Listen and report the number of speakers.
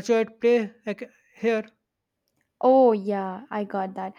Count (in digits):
2